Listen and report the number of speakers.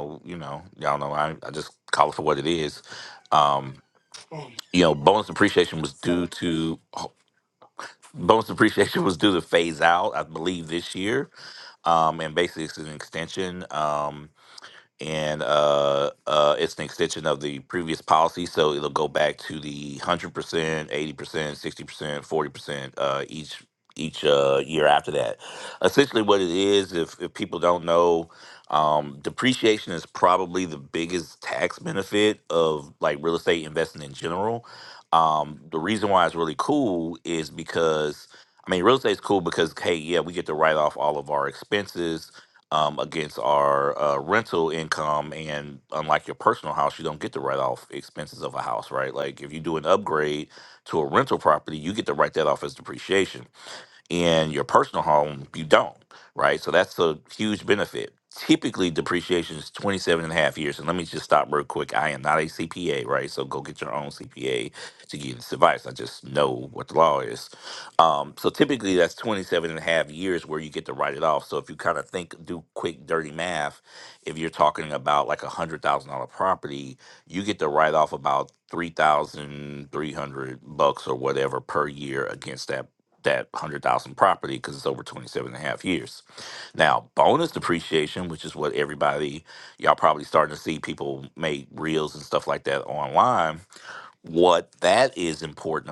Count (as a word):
one